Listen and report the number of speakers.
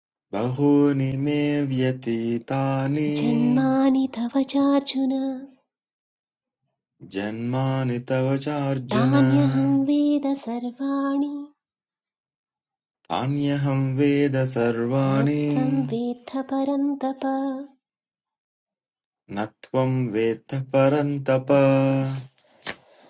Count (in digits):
2